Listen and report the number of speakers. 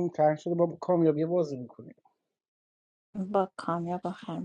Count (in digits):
2